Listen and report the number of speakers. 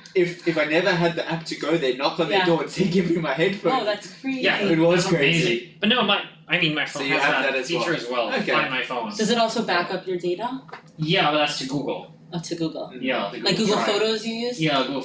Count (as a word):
three